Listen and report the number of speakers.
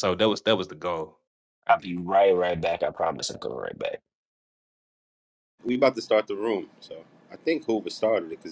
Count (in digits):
3